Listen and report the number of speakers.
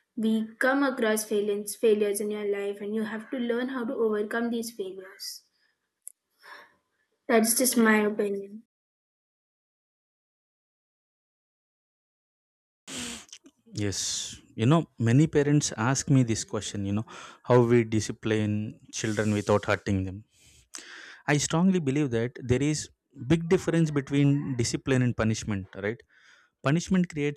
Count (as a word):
two